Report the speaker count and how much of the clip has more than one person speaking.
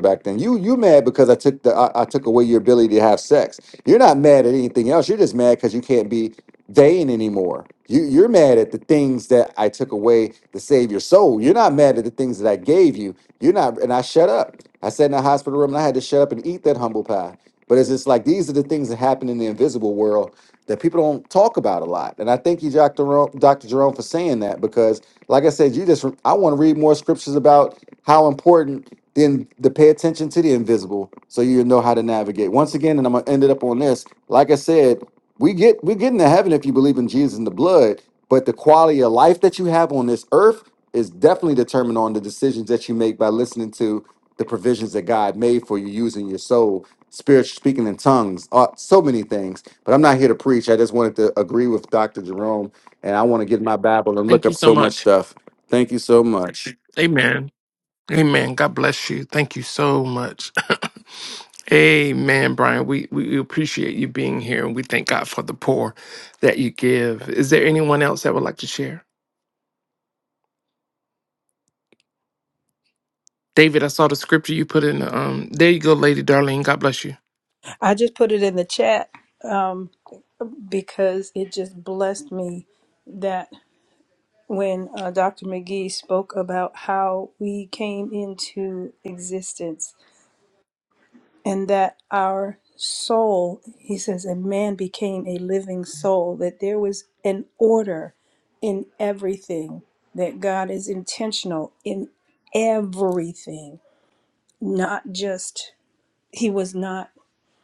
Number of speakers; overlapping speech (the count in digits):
3, about 1%